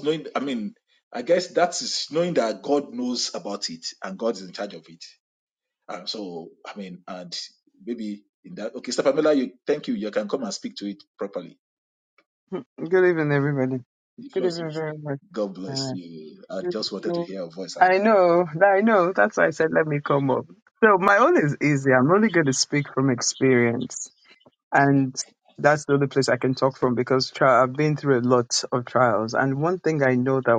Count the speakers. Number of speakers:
2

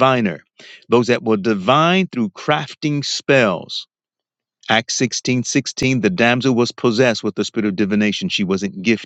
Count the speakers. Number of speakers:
1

